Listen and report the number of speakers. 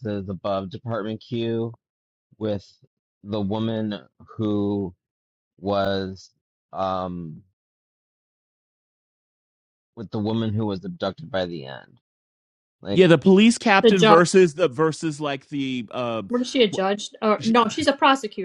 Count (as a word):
three